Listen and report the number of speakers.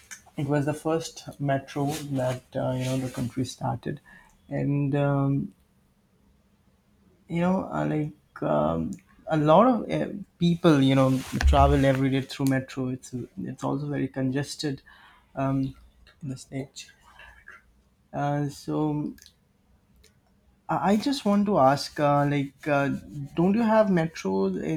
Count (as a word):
one